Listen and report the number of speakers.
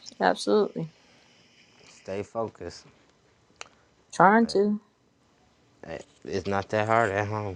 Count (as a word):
two